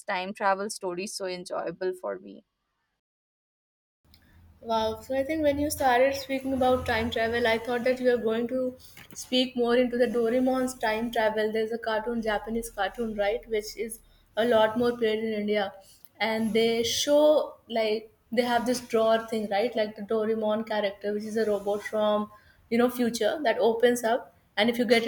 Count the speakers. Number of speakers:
2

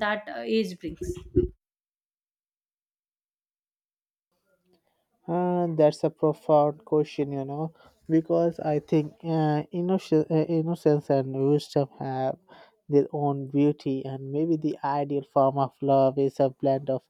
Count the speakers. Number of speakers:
2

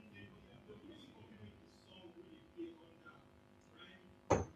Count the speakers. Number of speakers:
0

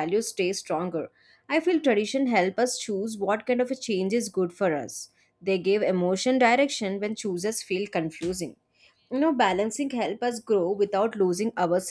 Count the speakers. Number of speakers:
1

